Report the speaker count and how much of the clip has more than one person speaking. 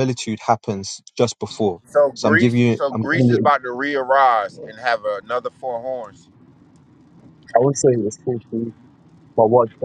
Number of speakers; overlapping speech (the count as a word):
two, about 13%